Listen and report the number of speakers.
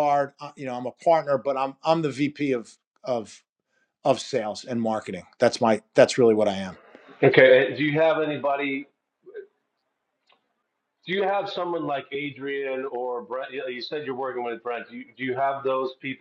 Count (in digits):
2